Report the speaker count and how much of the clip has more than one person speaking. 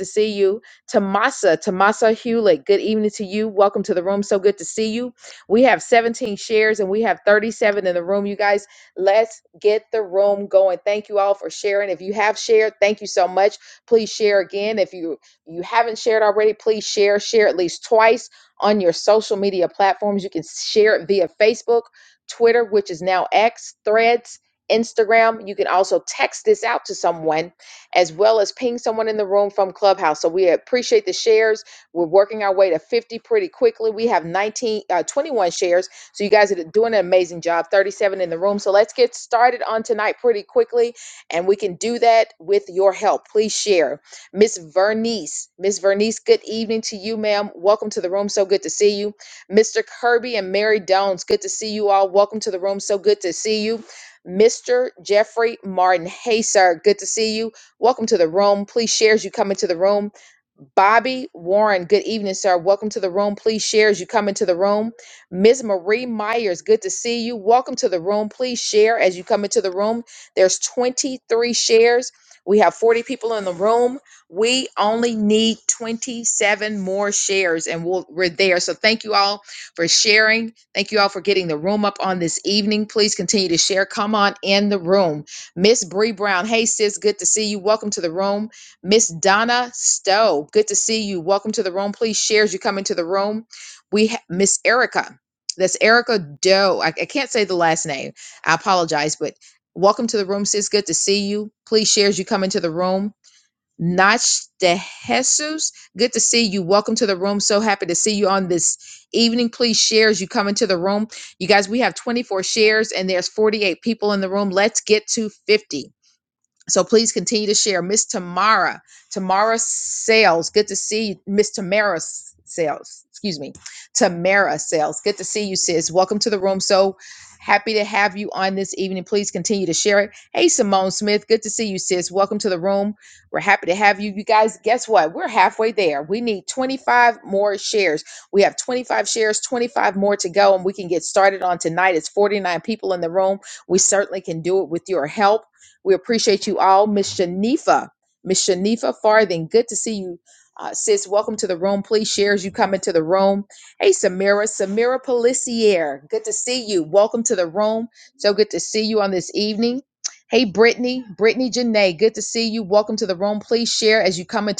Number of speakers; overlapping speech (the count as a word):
one, no overlap